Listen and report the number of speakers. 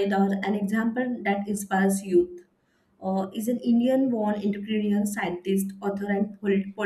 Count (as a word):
one